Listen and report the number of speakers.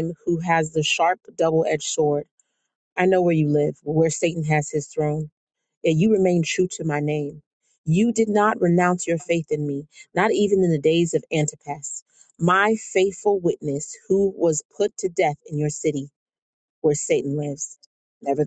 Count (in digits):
1